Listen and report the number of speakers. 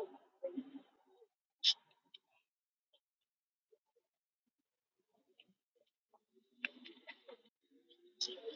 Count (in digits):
0